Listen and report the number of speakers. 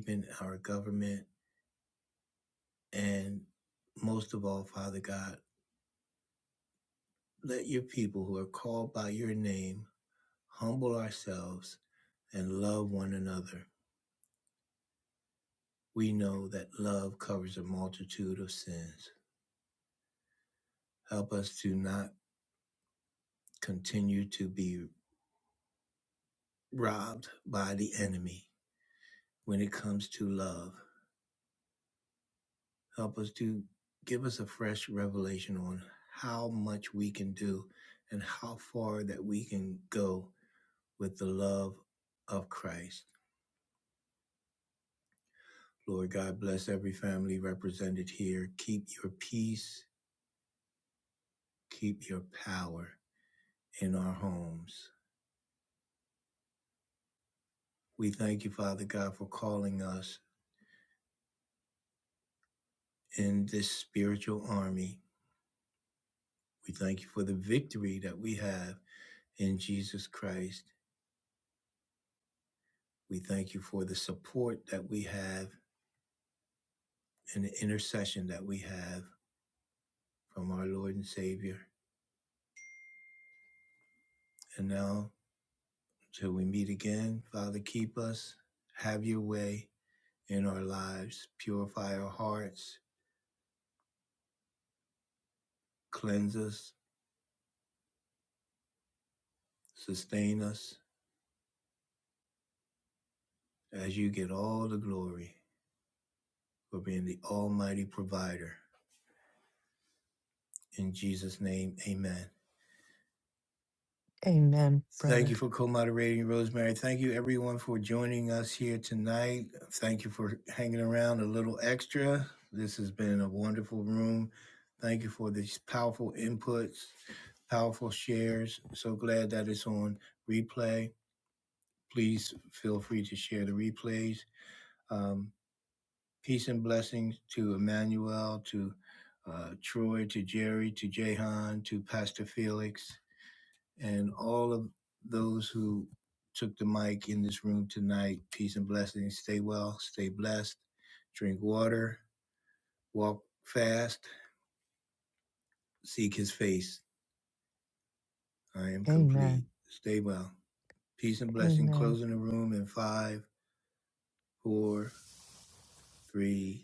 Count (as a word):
two